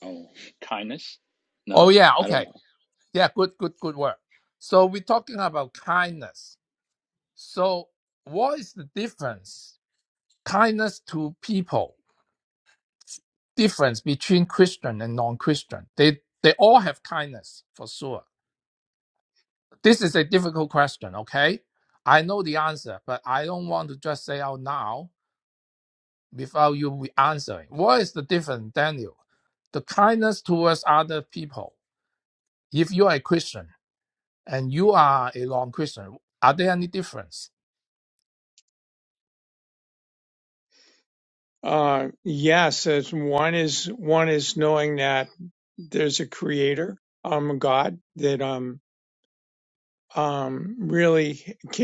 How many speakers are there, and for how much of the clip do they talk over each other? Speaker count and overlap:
3, about 1%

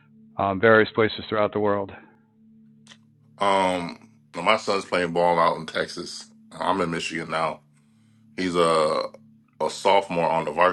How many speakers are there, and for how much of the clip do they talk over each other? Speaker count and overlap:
2, no overlap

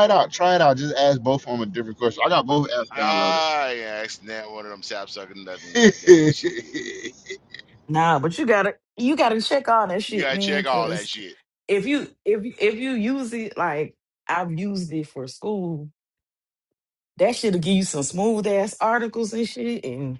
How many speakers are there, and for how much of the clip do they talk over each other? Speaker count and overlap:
3, about 7%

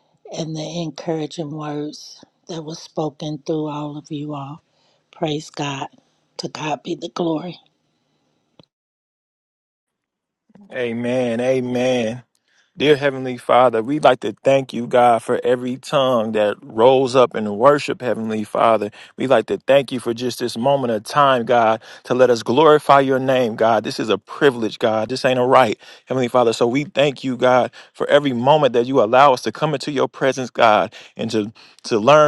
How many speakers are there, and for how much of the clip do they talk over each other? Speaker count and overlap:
2, no overlap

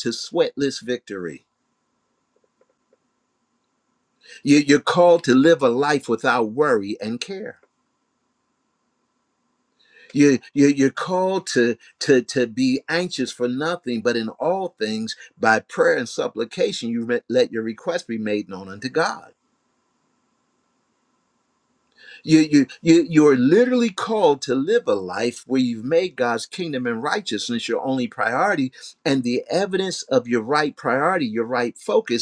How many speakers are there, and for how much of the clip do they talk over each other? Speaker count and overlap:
1, no overlap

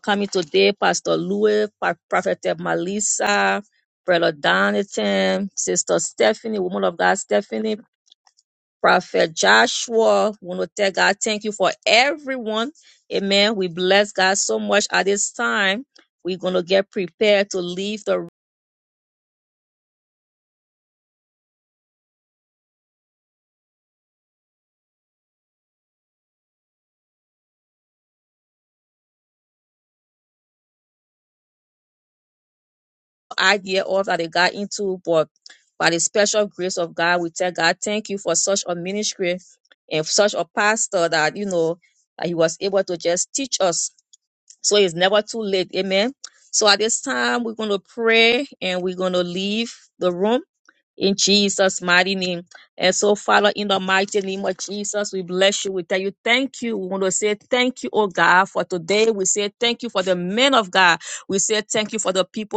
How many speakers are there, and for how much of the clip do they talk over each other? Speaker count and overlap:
1, no overlap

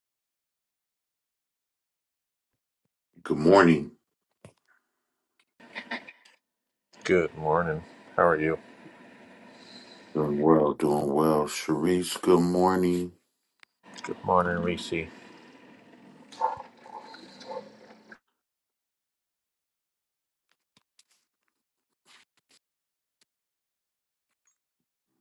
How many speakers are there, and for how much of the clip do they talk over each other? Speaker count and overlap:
2, no overlap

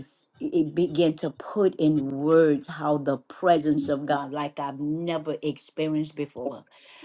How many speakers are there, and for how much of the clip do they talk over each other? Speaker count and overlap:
1, no overlap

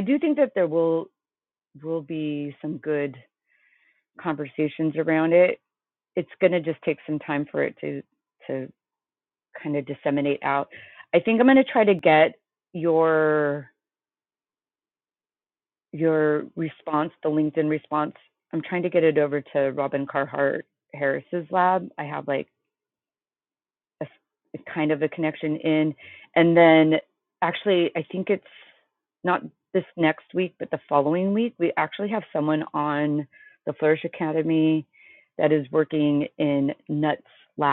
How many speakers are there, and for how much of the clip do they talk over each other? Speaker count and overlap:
1, no overlap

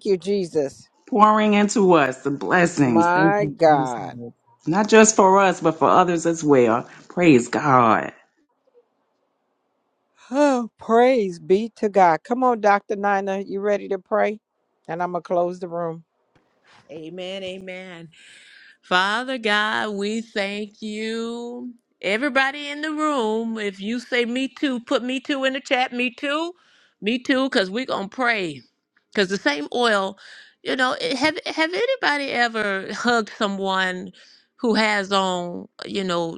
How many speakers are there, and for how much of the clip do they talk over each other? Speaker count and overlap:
3, about 3%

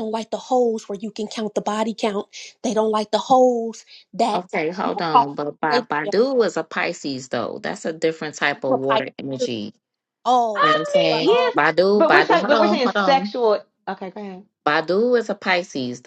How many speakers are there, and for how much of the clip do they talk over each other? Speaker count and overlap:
3, about 24%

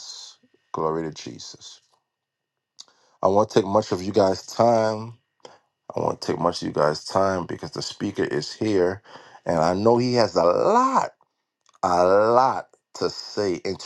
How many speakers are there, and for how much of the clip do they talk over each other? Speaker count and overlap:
1, no overlap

